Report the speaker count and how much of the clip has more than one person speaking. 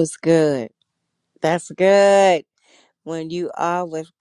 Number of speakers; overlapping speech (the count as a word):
one, no overlap